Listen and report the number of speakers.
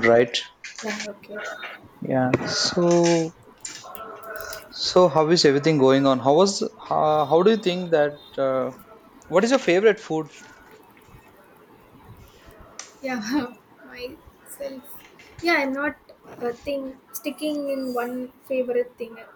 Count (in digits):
2